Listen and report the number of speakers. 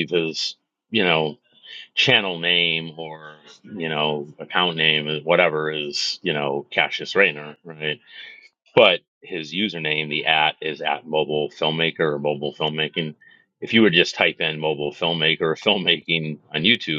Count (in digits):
1